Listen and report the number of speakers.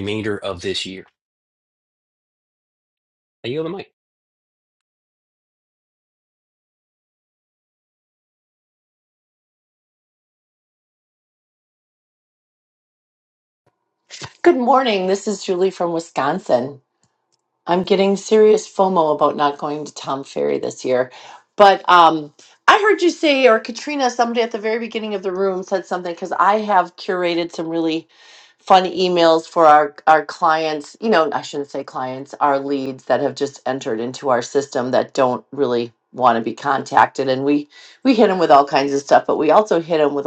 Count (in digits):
2